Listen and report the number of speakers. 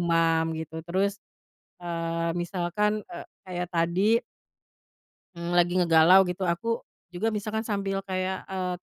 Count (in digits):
1